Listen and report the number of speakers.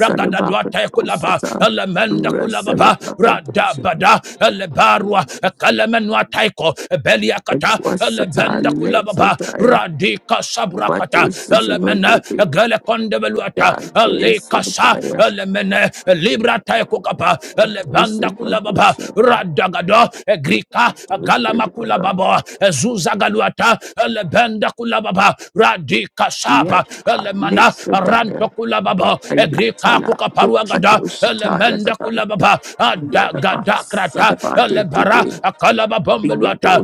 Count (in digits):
2